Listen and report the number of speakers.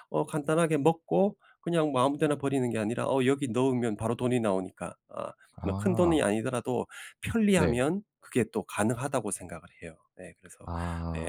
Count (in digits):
2